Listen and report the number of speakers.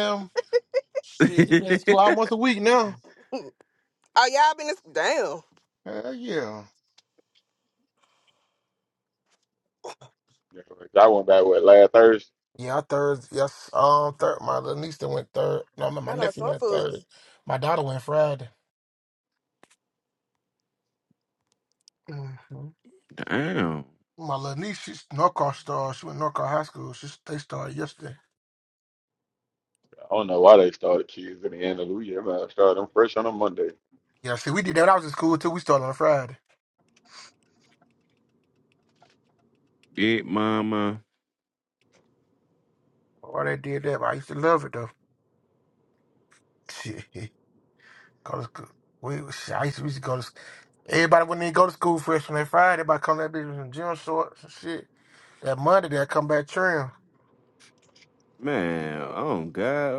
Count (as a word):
four